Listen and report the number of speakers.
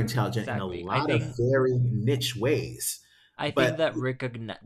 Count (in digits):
2